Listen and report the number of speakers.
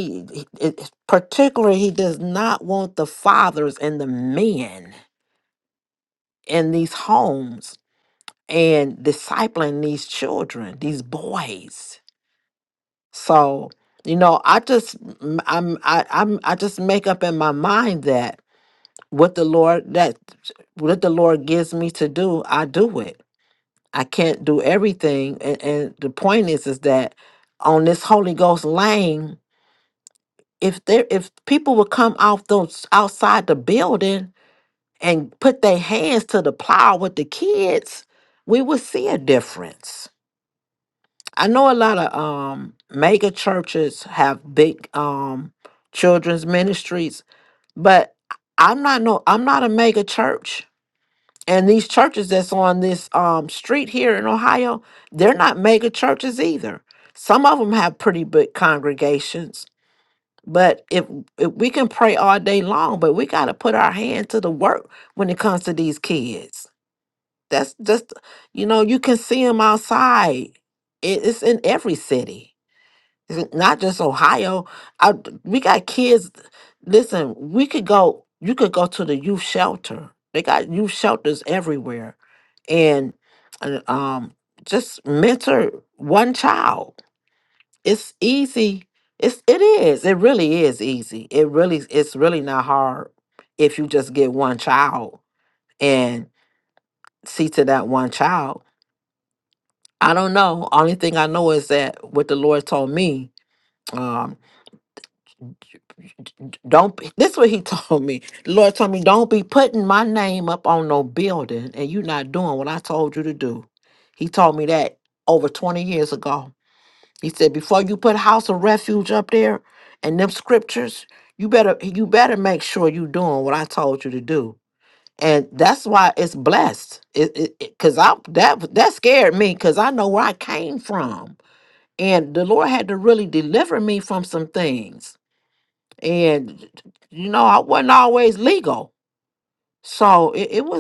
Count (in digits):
1